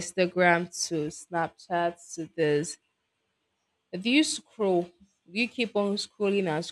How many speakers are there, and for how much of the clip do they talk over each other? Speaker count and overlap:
1, no overlap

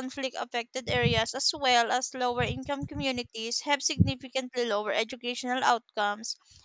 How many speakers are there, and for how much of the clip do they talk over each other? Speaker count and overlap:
1, no overlap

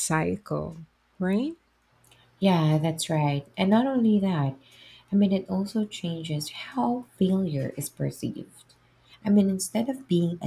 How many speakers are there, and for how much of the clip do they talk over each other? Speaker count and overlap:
2, no overlap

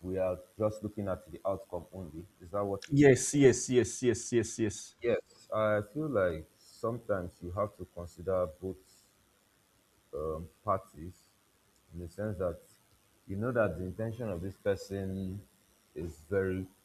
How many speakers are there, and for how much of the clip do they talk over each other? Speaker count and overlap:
2, about 1%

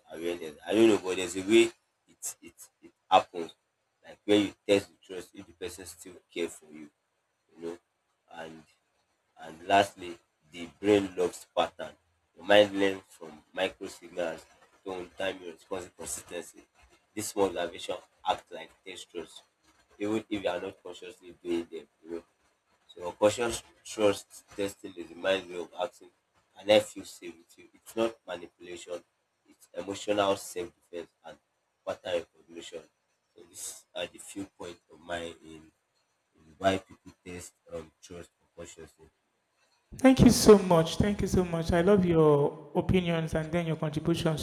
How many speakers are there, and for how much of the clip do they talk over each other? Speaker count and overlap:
2, no overlap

